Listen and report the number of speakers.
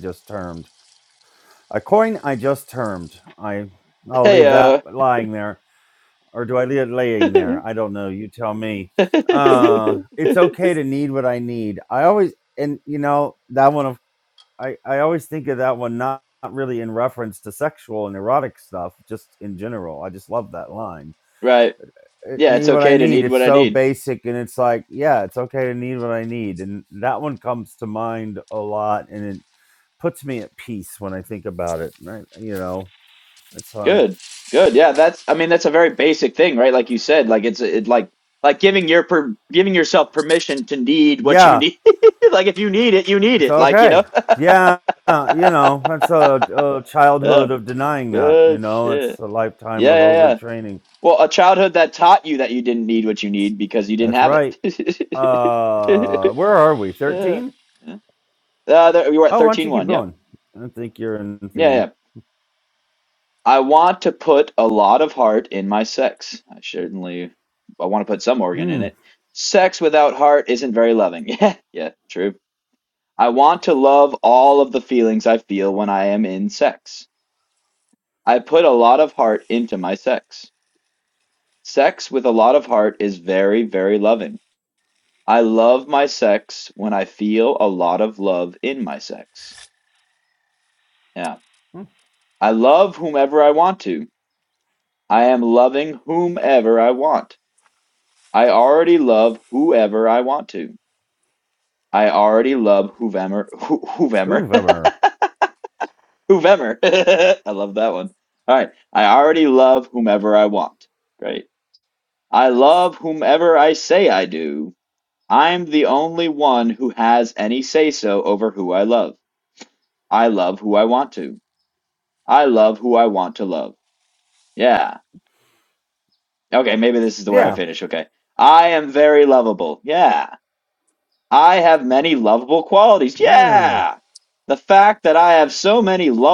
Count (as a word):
two